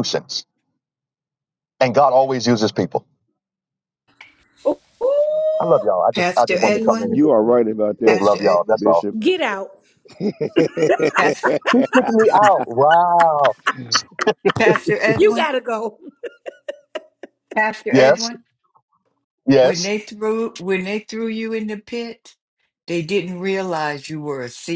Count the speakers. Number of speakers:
four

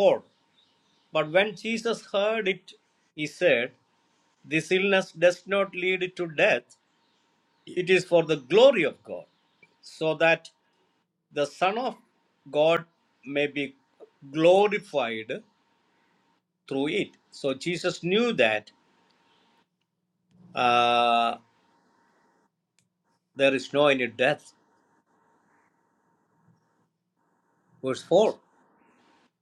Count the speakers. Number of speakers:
one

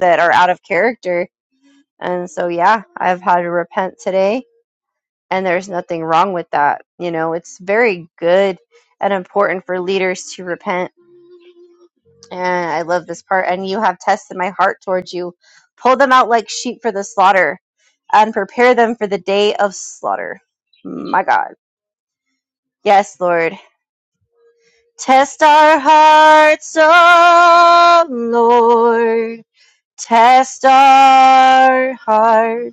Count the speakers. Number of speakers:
one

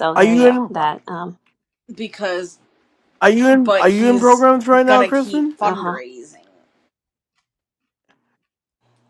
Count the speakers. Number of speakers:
three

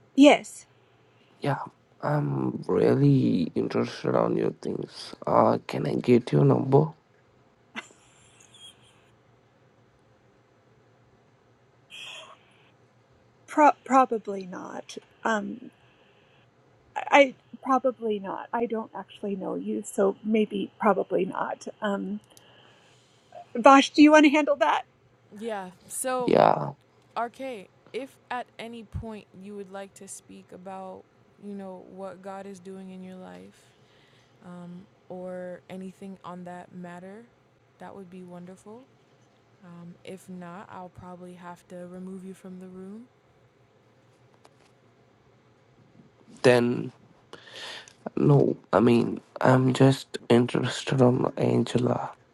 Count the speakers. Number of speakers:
three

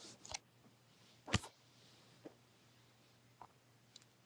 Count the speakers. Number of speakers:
zero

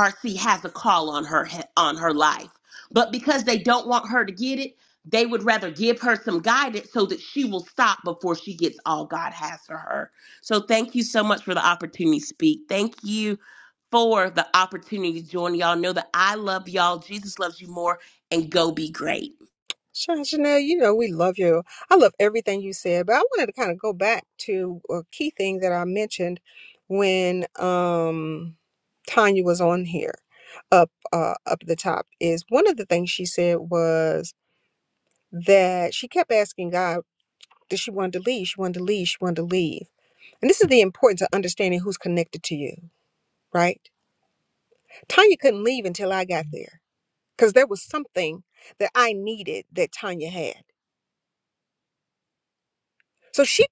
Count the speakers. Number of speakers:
two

